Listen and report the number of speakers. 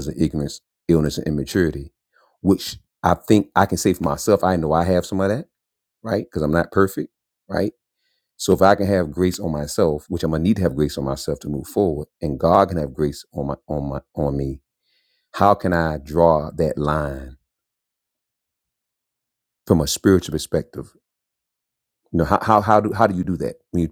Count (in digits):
1